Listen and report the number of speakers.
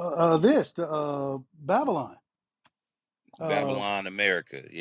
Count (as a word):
two